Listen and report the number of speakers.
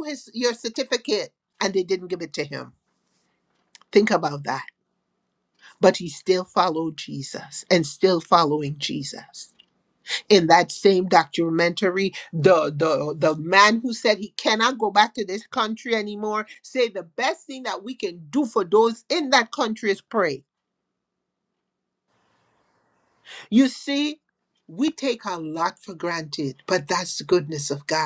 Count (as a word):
one